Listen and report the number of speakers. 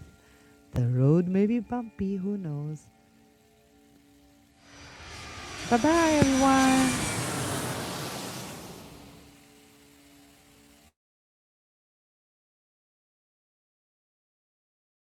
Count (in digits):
1